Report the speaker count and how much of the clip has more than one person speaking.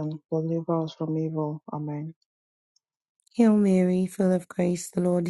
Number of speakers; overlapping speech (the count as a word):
two, no overlap